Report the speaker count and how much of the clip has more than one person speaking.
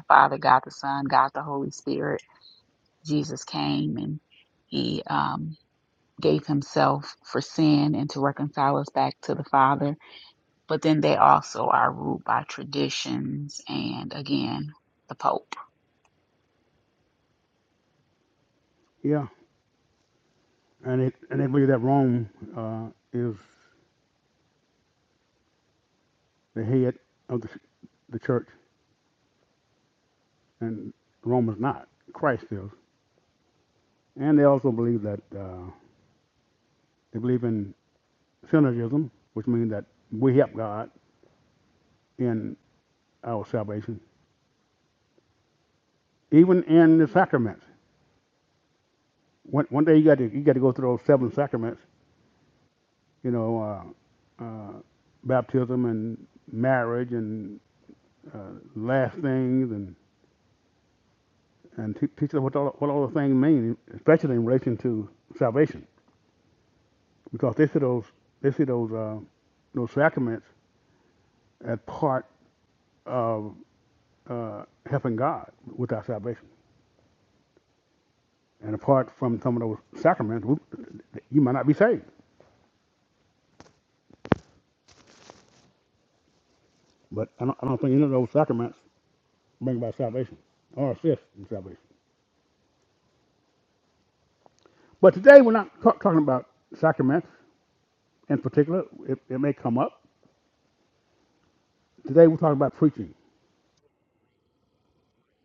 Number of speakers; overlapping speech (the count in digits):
2, no overlap